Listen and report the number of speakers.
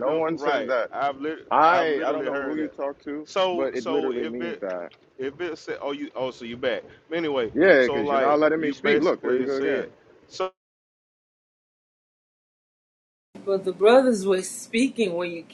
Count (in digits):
3